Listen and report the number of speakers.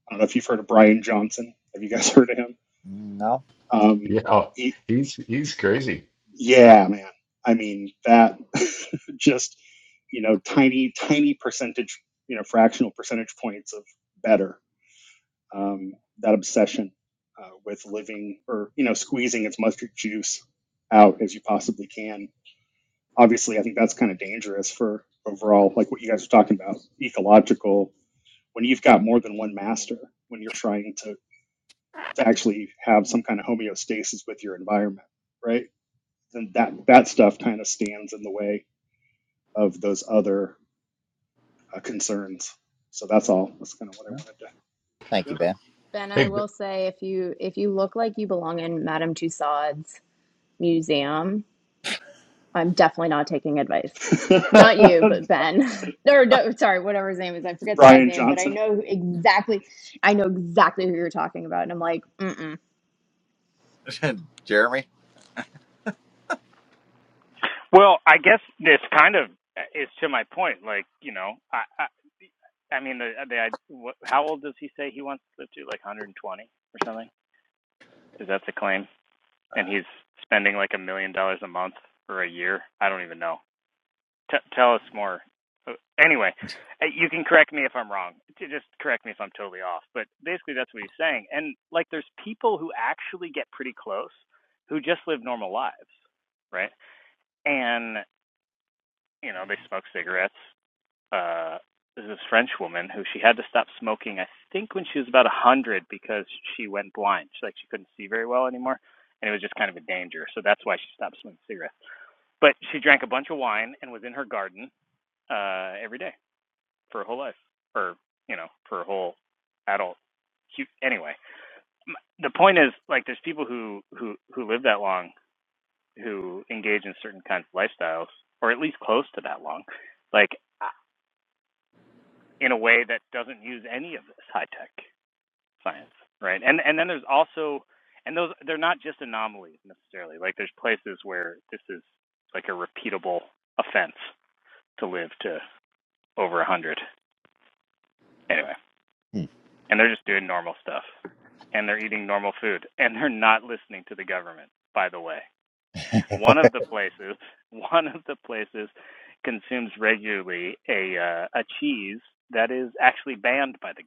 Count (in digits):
5